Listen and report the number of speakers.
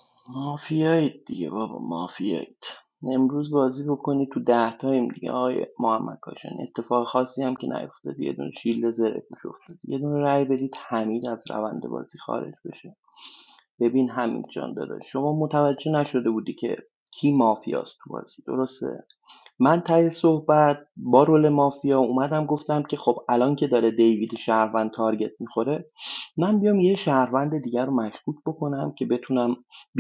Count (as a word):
one